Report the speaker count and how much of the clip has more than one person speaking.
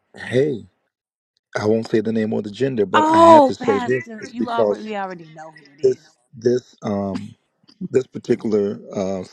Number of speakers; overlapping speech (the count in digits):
2, about 20%